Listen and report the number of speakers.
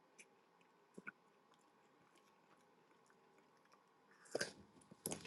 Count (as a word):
zero